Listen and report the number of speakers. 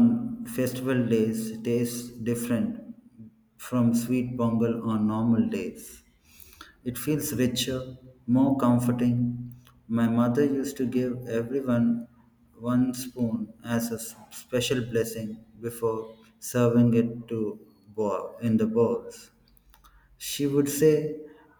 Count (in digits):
1